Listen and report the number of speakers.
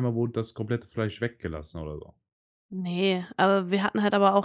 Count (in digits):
2